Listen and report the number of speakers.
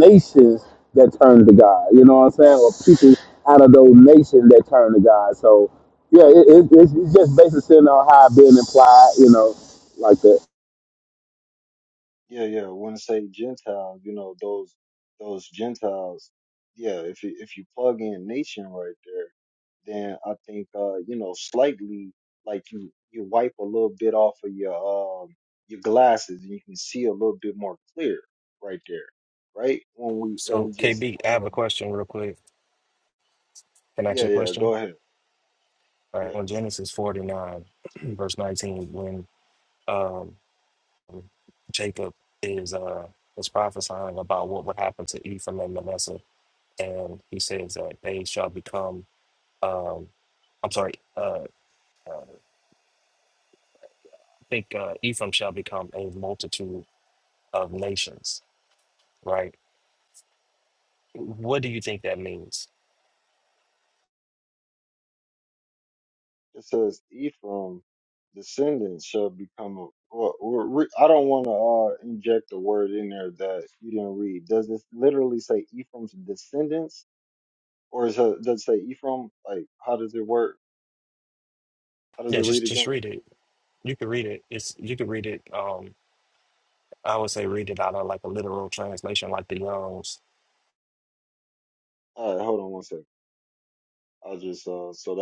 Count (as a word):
three